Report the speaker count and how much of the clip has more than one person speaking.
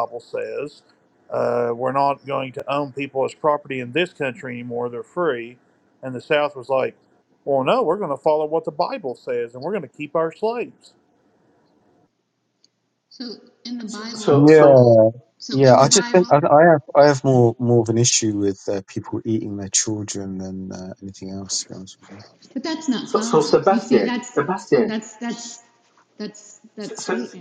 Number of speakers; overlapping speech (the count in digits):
4, about 13%